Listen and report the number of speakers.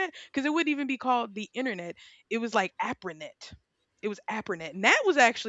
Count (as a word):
one